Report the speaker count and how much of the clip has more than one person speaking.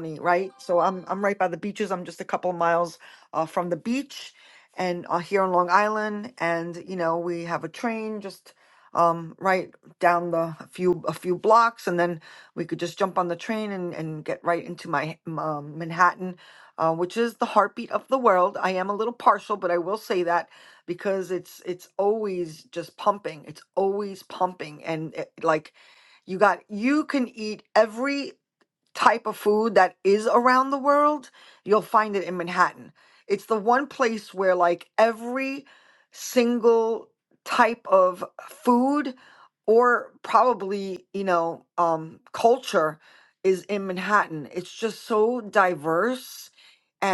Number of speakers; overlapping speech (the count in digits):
1, no overlap